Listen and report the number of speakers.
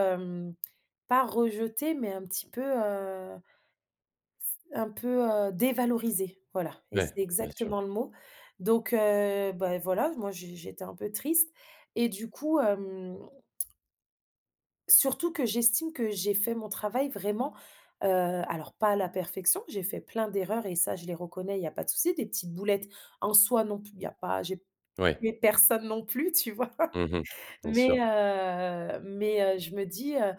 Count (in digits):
2